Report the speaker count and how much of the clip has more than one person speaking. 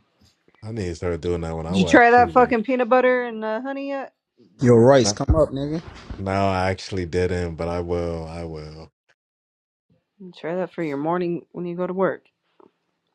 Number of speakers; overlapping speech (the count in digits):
3, about 7%